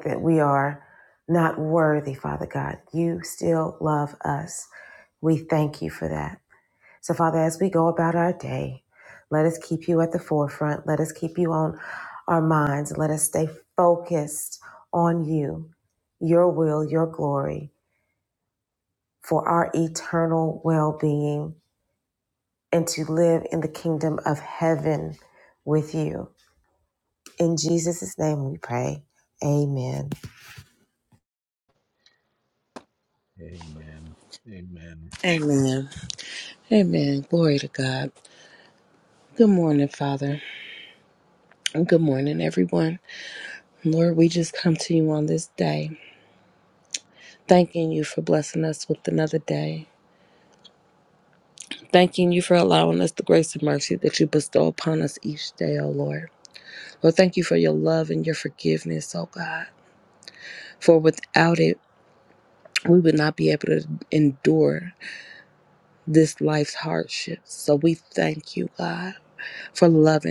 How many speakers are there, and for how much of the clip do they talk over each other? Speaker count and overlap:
3, no overlap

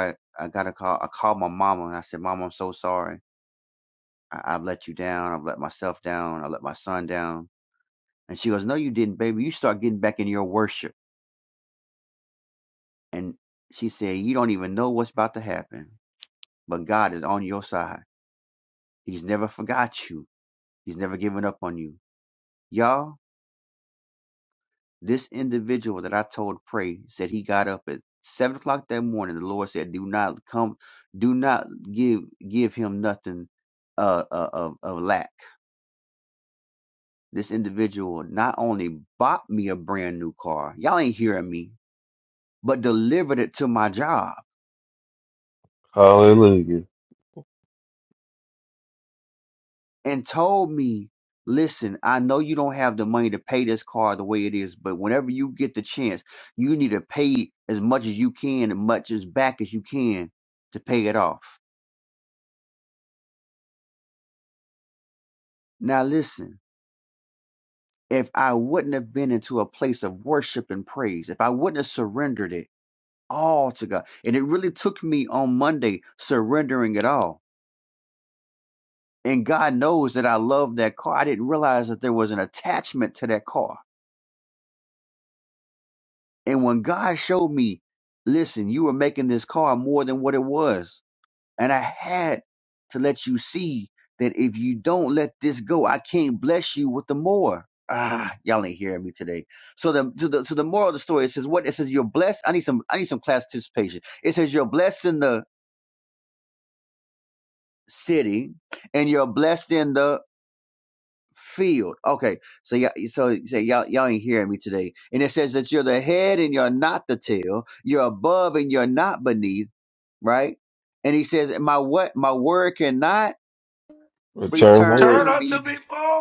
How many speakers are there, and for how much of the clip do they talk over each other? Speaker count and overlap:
3, about 1%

